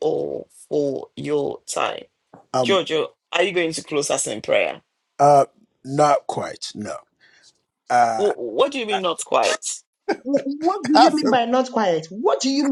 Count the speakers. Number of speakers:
3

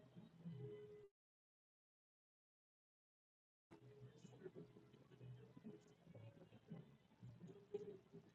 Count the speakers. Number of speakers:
0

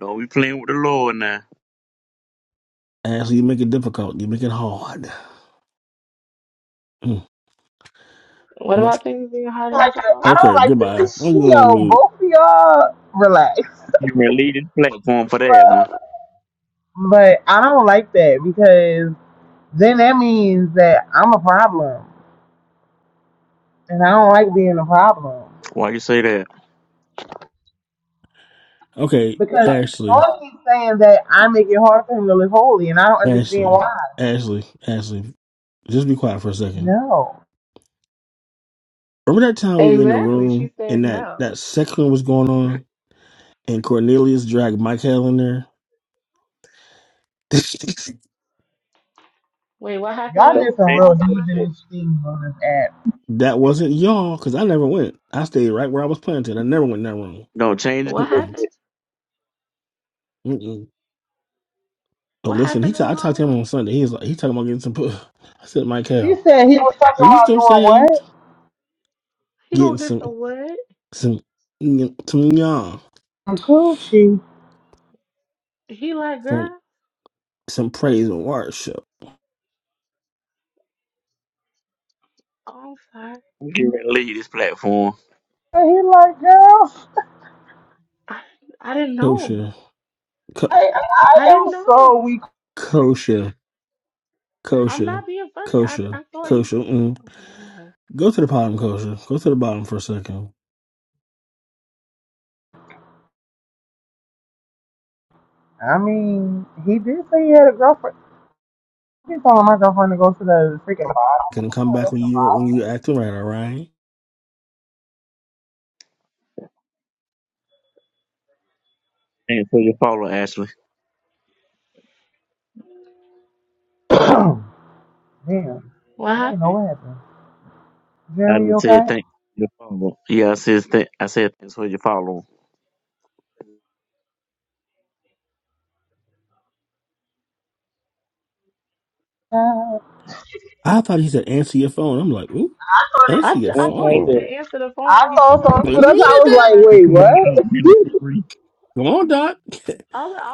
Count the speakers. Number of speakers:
4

